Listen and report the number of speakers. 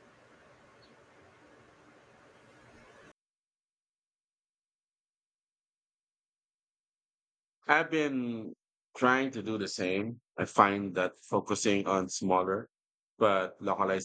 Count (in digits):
1